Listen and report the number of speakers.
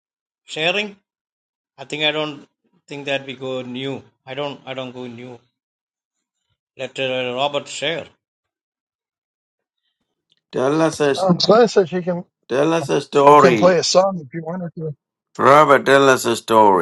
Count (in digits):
3